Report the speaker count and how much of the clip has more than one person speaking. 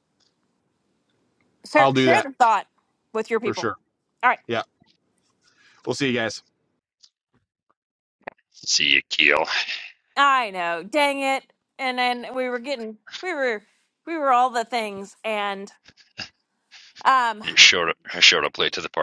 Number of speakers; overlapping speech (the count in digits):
3, about 4%